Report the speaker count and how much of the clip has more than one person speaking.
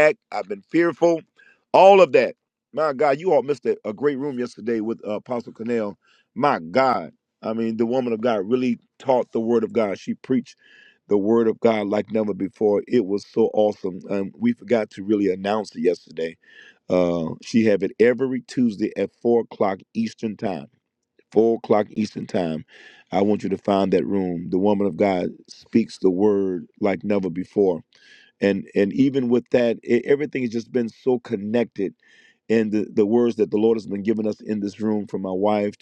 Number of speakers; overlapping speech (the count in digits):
1, no overlap